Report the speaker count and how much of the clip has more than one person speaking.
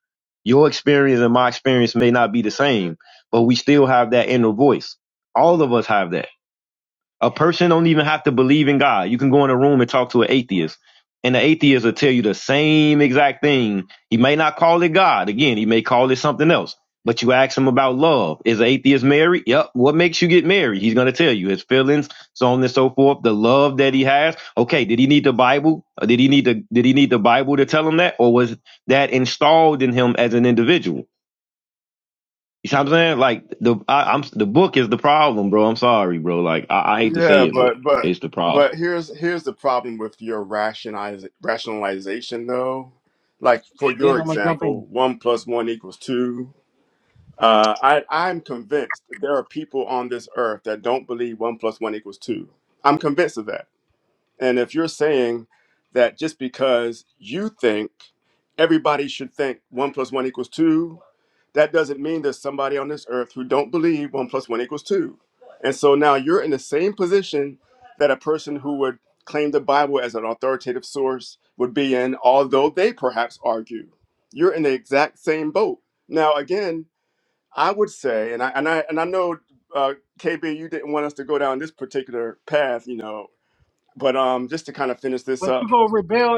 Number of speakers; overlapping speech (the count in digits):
3, about 3%